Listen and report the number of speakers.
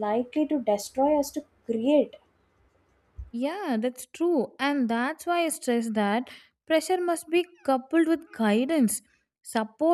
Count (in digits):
2